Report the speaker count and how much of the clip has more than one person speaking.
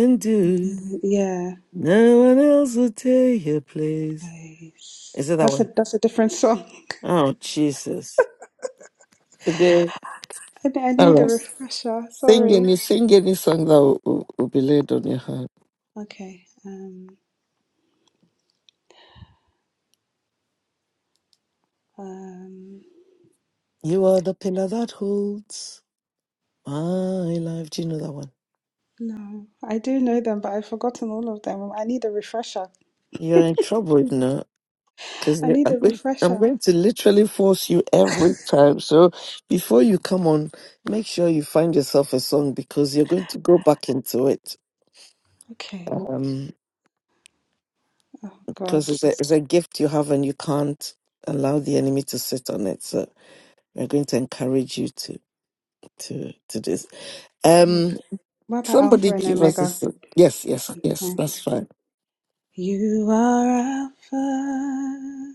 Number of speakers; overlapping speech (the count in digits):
2, about 6%